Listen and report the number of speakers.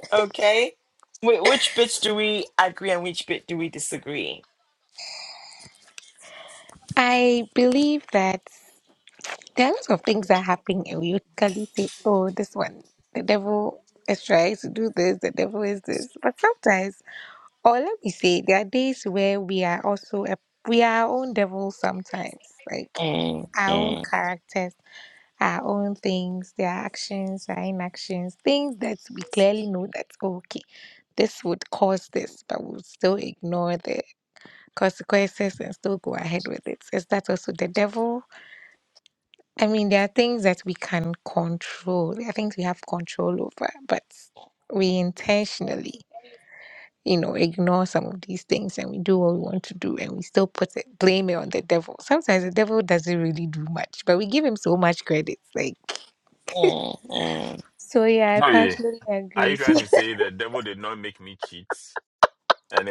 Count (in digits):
3